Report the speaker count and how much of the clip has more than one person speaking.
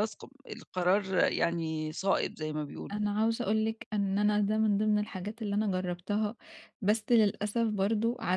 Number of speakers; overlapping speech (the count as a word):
two, about 1%